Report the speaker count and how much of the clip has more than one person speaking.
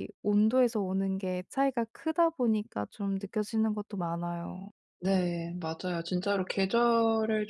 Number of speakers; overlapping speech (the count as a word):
two, no overlap